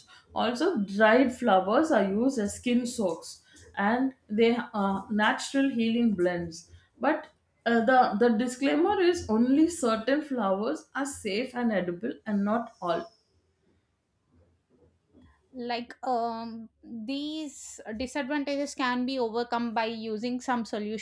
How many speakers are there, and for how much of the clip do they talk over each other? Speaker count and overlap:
two, no overlap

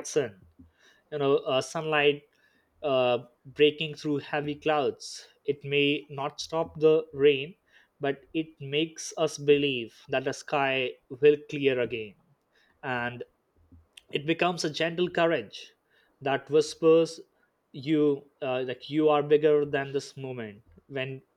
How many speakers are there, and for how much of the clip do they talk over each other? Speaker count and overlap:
one, no overlap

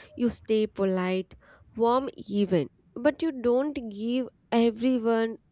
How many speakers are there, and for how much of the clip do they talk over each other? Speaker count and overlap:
one, no overlap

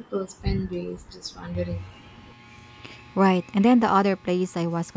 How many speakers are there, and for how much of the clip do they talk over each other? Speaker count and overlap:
two, no overlap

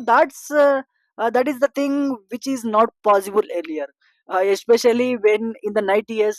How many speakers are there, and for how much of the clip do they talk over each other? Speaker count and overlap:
one, no overlap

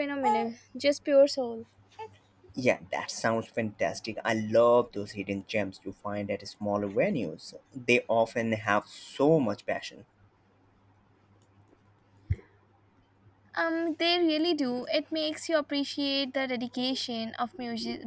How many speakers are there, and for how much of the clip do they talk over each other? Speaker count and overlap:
two, no overlap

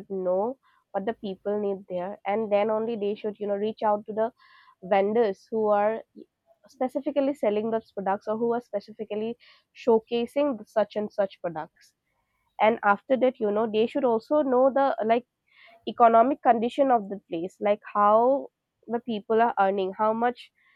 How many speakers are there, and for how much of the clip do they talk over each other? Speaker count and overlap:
one, no overlap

